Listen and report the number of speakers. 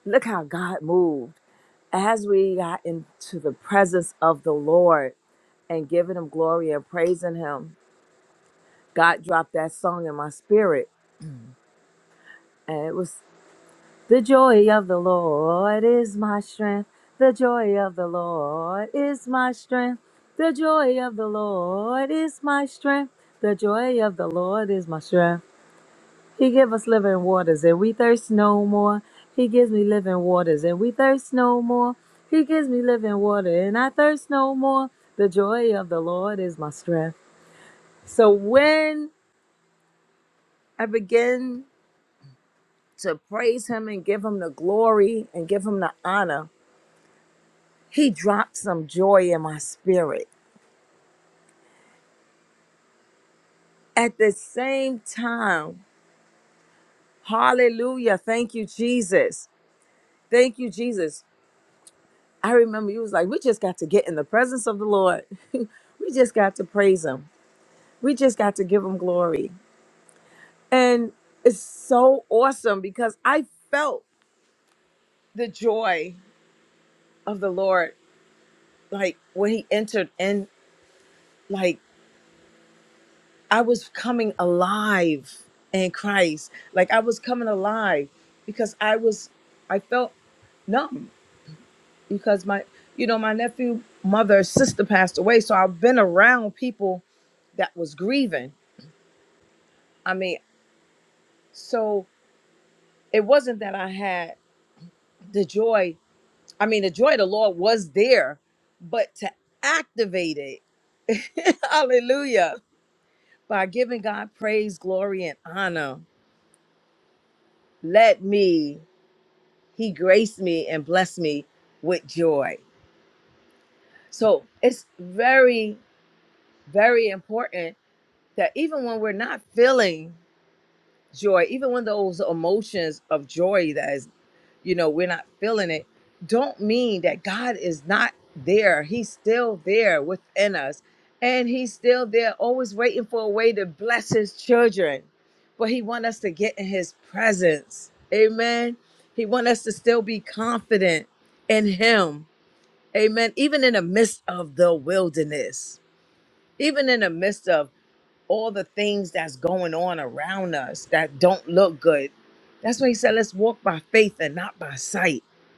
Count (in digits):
1